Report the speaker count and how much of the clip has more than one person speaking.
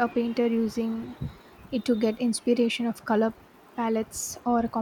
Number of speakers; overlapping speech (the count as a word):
one, no overlap